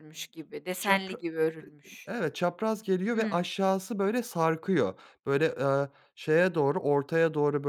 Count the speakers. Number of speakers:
2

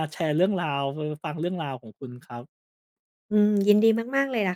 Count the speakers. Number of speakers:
2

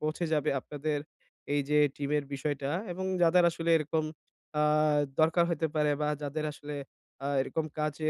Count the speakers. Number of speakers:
1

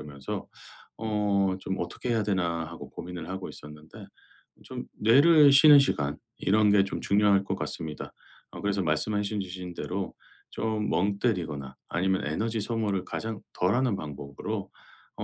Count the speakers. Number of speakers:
1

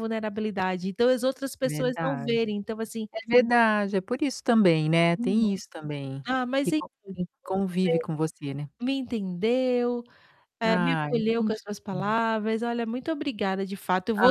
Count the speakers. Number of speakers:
2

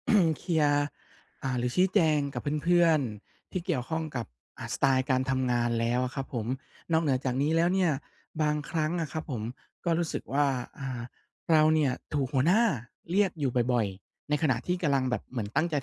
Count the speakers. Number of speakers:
1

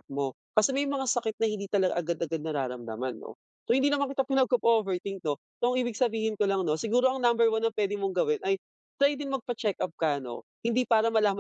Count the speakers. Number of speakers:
1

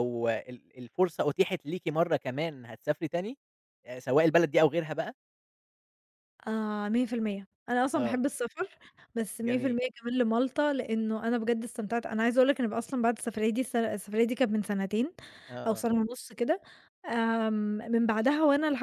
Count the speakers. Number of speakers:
2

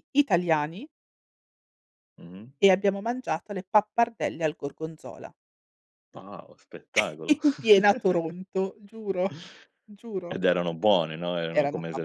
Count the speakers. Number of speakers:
2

